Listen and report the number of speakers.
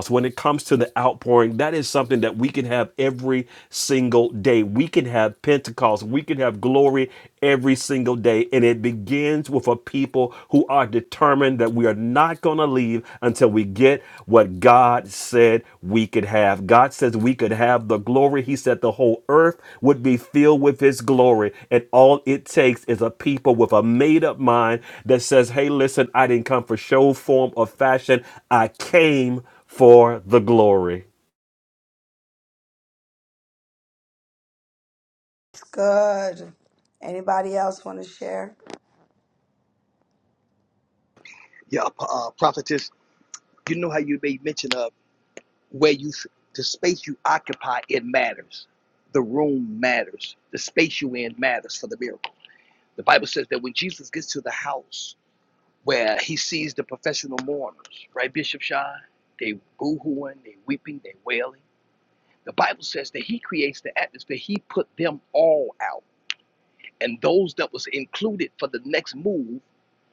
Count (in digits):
3